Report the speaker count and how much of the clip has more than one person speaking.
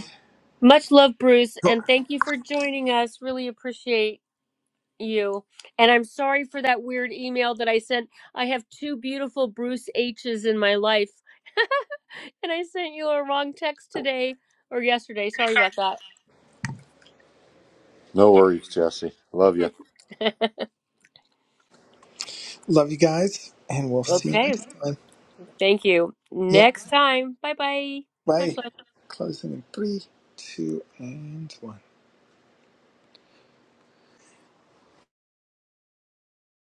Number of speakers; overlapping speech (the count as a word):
three, about 3%